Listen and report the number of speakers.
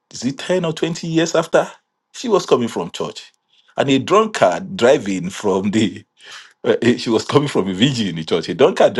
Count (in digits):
1